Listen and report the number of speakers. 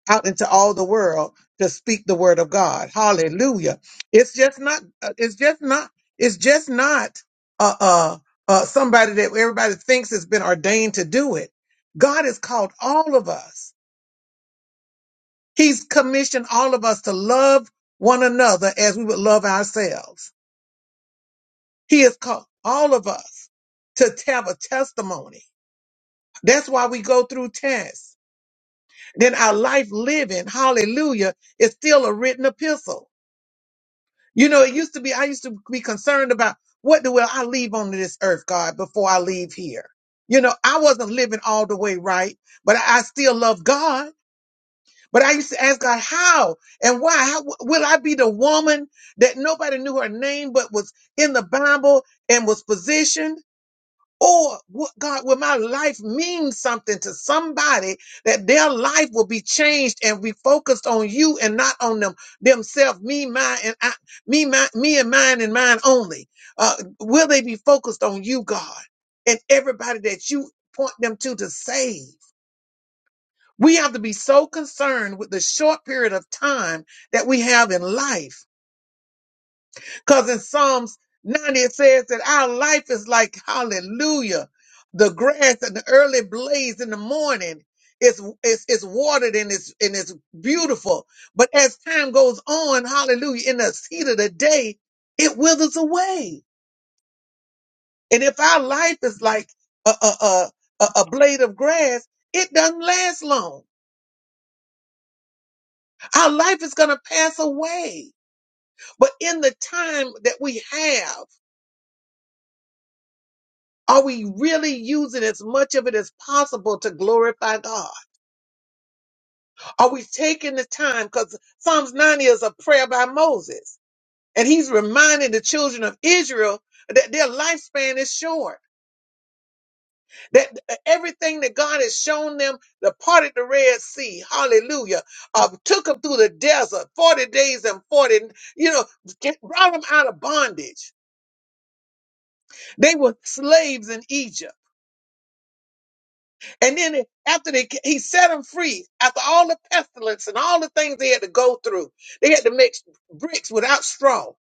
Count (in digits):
1